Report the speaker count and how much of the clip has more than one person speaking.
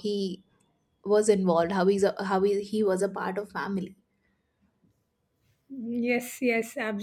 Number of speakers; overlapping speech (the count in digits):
2, no overlap